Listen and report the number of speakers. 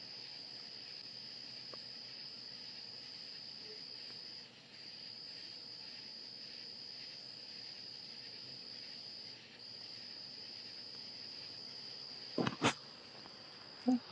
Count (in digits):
0